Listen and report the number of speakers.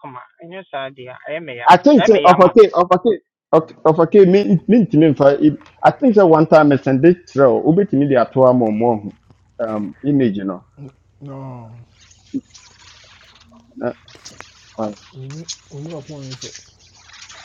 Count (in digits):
3